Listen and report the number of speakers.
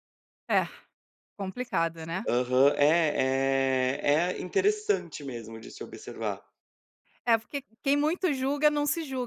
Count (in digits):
2